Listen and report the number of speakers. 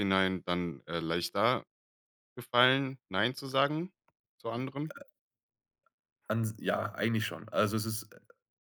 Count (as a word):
two